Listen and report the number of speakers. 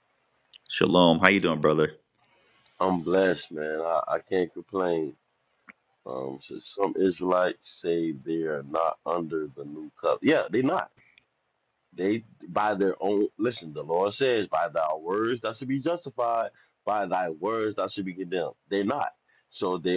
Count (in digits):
2